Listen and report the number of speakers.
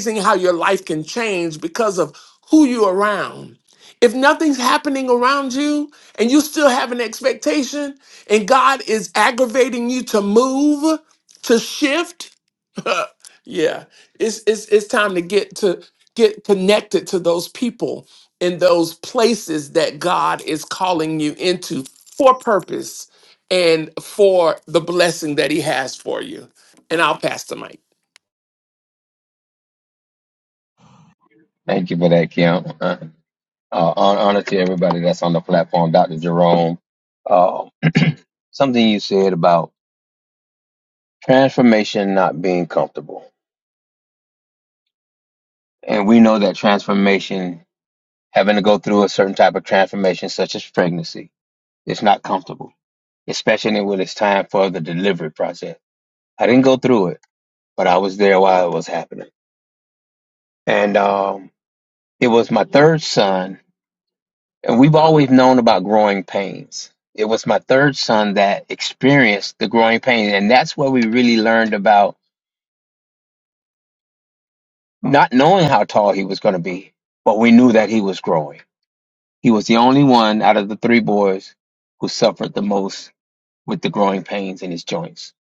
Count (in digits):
2